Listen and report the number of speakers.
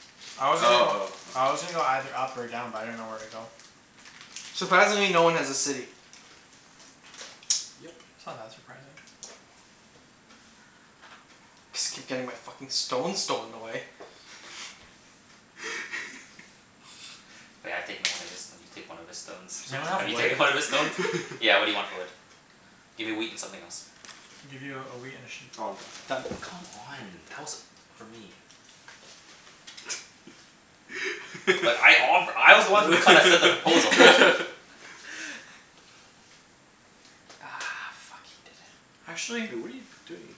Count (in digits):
4